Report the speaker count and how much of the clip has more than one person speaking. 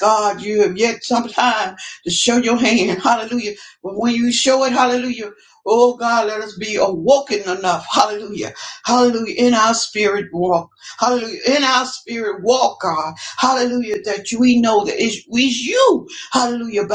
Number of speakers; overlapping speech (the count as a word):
one, no overlap